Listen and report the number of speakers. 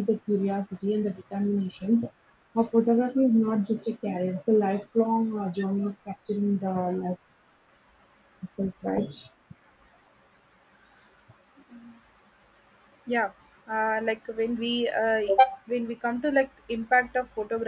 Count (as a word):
two